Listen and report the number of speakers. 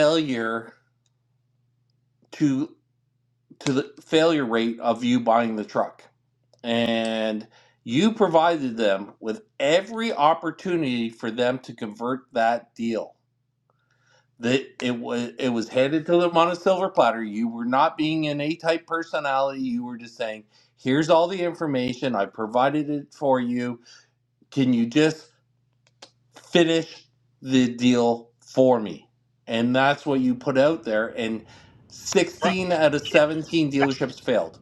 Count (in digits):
1